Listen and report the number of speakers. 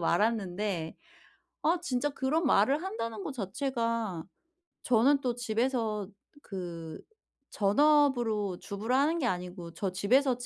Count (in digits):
1